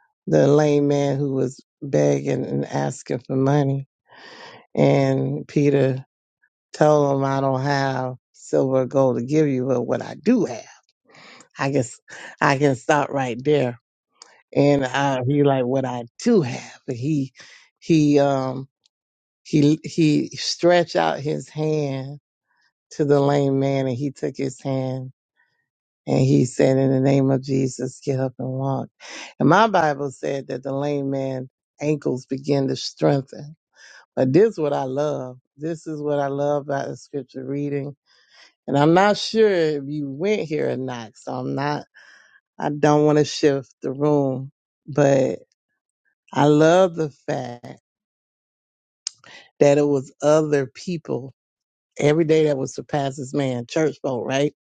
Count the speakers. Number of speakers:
one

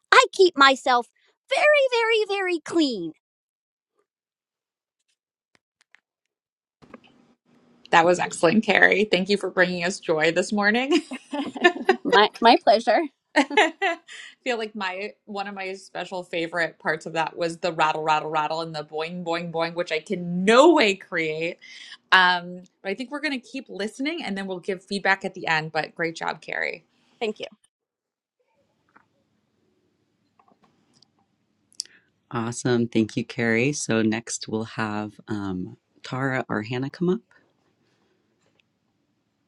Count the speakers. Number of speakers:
three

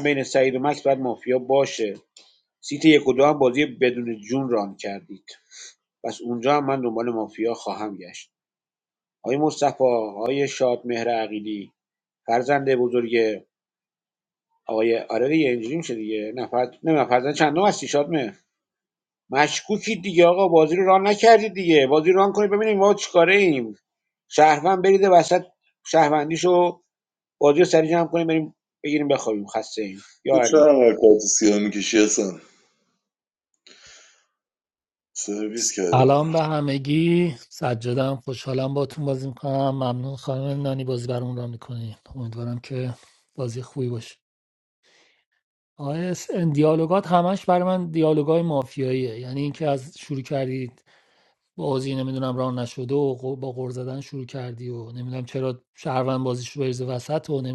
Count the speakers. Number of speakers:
three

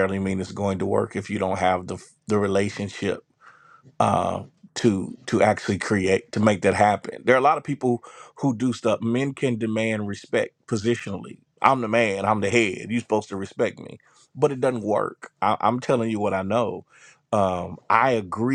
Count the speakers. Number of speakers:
one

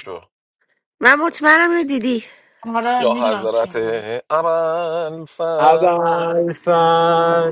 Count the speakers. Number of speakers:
four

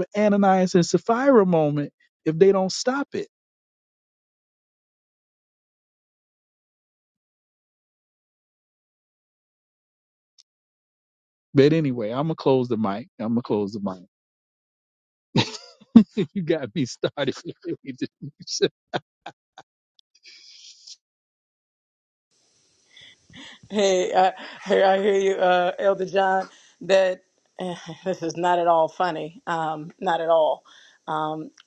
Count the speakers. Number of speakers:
two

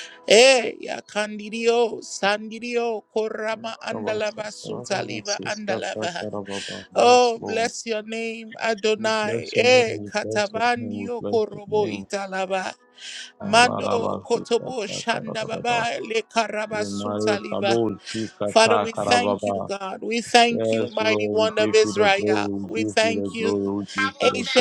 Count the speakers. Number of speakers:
two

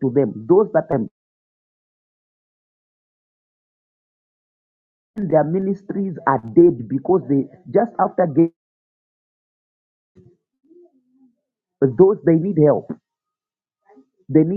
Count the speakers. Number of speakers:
one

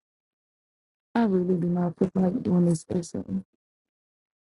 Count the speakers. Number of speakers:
one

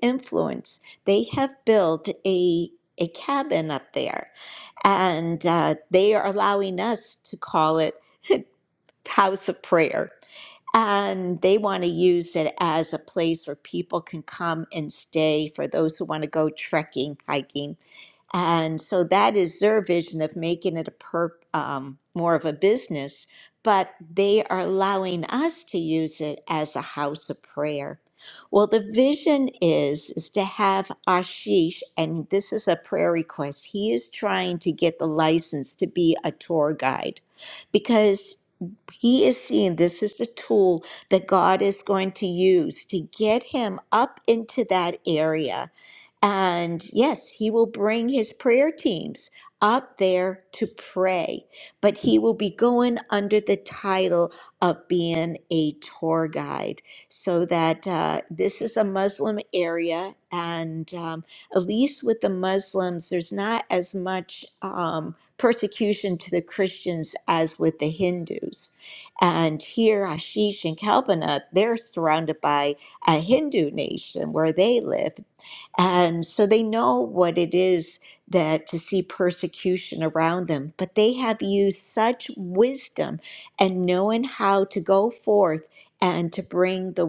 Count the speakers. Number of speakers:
one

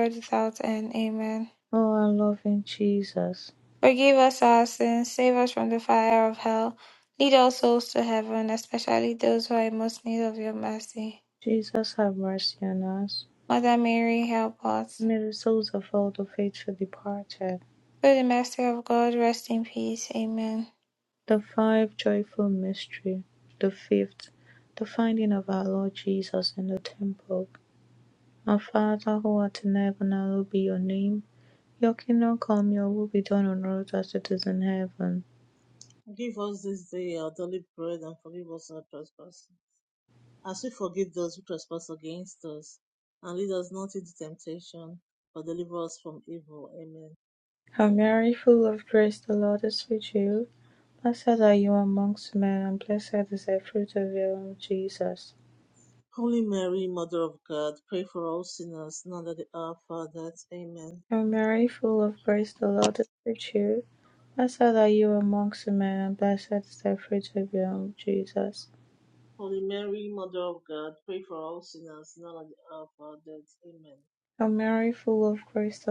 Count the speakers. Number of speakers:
three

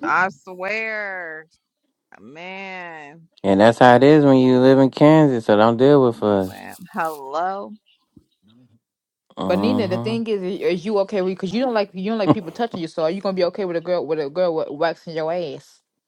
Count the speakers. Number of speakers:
three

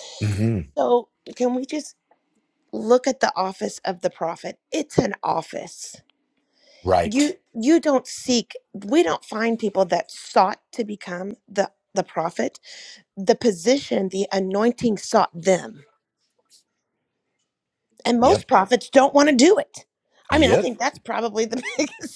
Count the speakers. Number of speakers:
two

